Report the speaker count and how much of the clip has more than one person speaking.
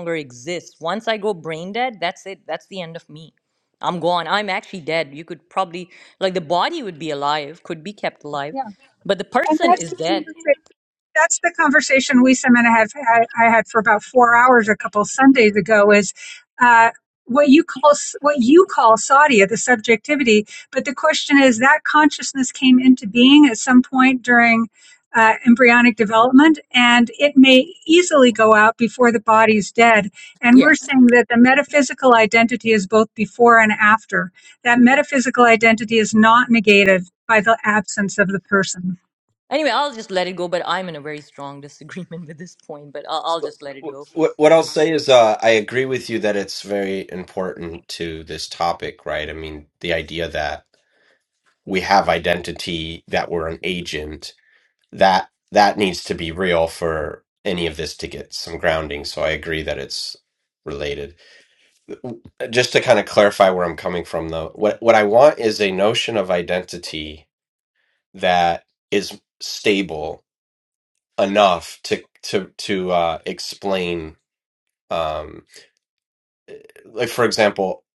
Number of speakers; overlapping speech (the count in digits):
3, about 2%